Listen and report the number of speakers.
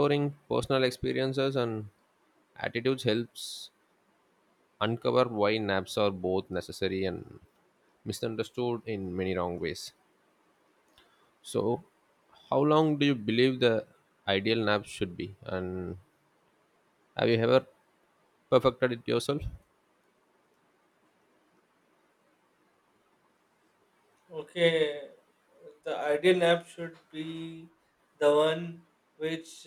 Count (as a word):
two